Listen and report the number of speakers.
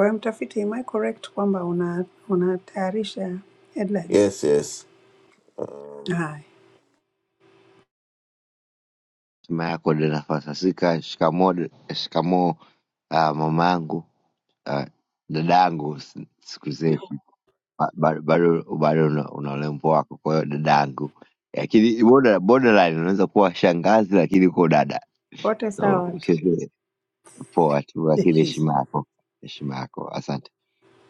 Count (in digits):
3